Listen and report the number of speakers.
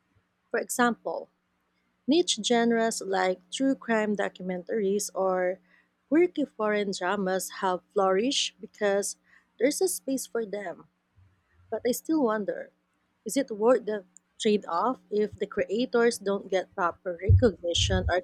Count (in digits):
1